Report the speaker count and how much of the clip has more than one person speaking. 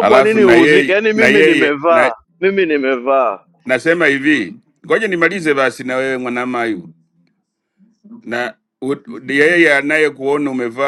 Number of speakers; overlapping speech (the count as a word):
two, about 19%